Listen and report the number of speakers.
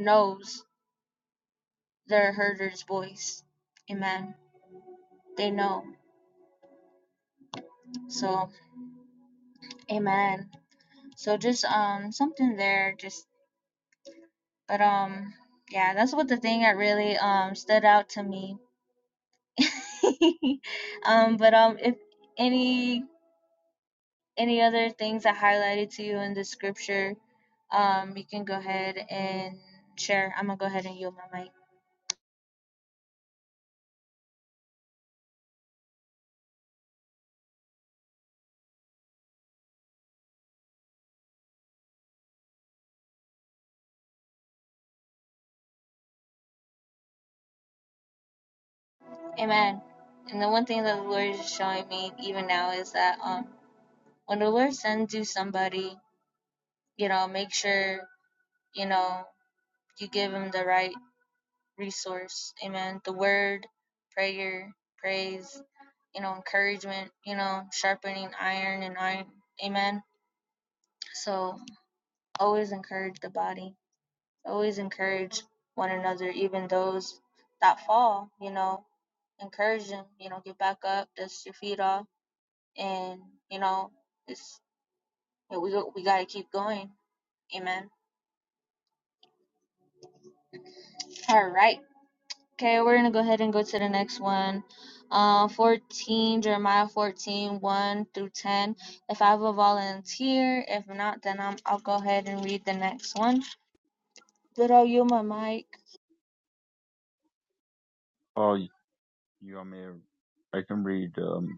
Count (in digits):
2